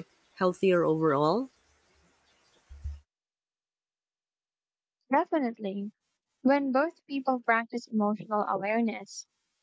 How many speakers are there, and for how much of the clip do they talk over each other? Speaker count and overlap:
2, no overlap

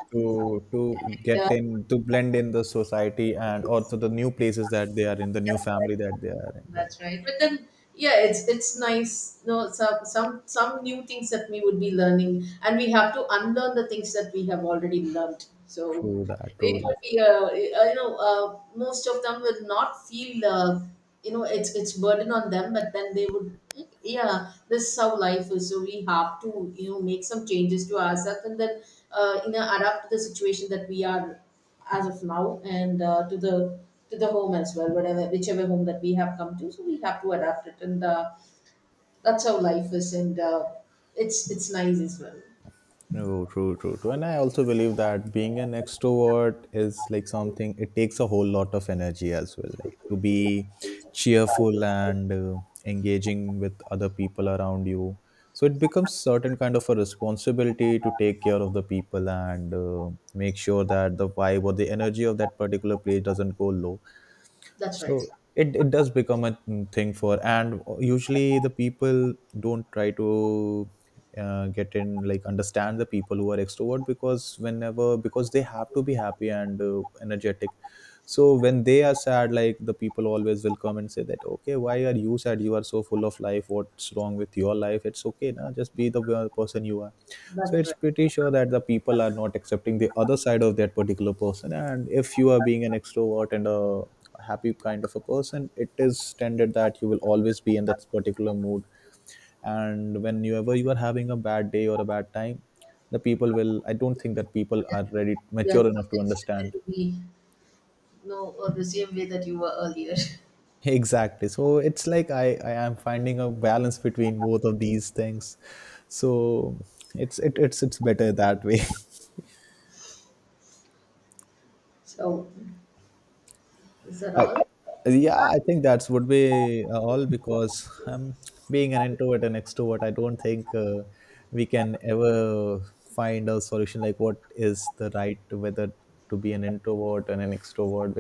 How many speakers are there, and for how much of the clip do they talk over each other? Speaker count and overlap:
2, about 2%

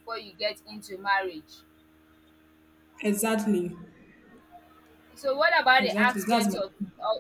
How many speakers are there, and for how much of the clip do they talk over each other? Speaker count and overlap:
2, about 11%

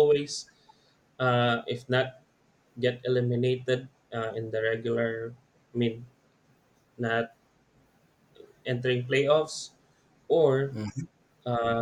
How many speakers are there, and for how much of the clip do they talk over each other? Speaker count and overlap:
1, no overlap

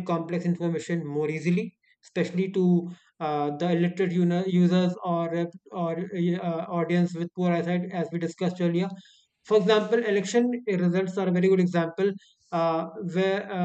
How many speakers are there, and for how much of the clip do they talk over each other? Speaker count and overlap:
1, no overlap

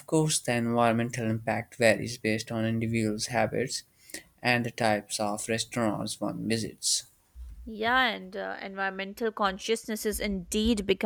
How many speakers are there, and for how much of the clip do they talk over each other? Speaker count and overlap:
2, no overlap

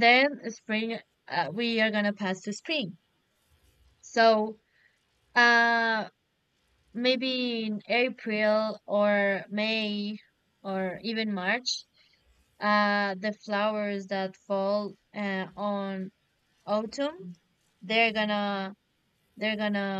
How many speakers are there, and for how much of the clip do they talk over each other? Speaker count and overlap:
1, no overlap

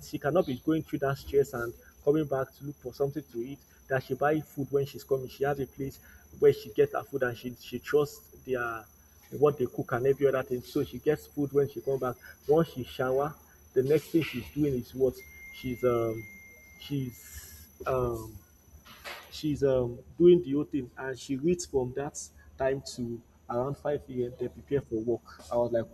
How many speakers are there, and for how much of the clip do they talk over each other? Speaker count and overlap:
1, no overlap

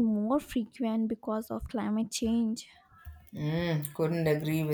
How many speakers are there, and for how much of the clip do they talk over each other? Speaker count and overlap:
2, no overlap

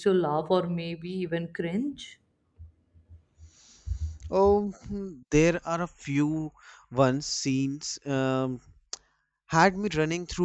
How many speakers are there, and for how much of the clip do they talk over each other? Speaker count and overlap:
2, no overlap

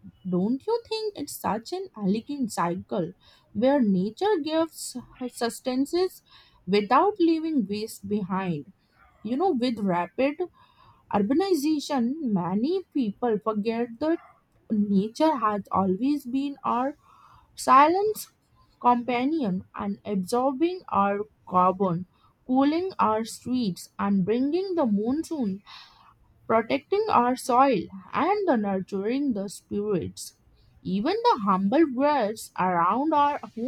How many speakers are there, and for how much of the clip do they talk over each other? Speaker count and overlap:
1, no overlap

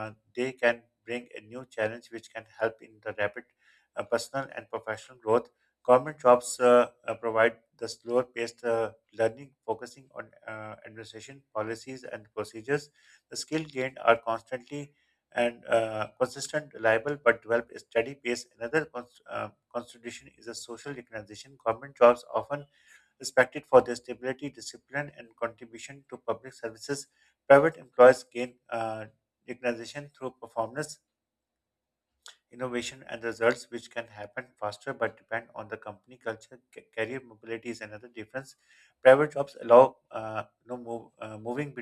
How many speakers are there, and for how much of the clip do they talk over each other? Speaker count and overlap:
1, no overlap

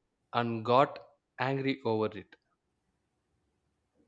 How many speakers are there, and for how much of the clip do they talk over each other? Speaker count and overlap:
1, no overlap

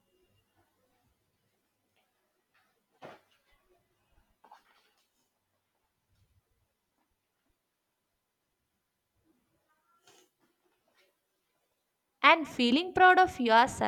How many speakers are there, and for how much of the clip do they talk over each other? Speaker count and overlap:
1, no overlap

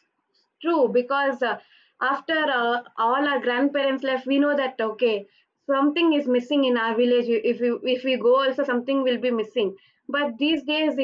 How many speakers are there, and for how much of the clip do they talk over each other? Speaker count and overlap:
1, no overlap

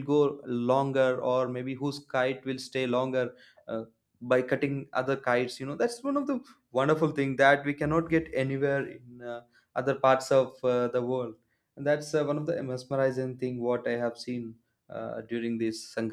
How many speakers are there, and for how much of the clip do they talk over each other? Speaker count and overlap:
1, no overlap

